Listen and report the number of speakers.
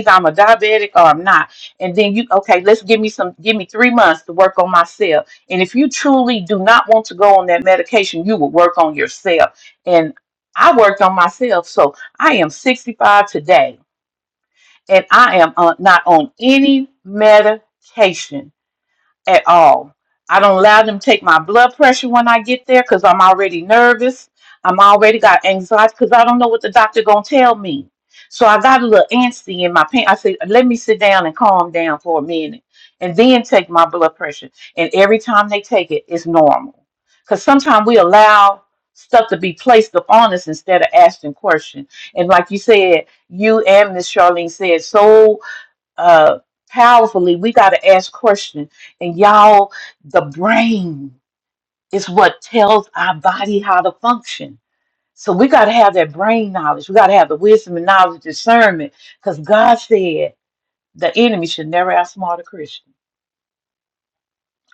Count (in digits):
1